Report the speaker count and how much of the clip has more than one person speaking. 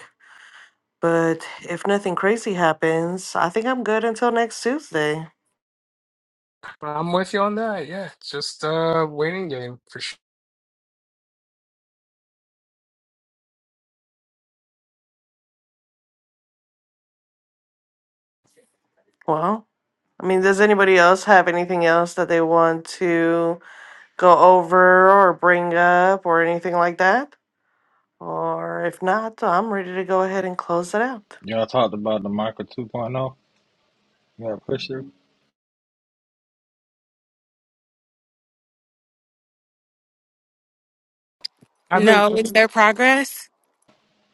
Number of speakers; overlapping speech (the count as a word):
four, about 1%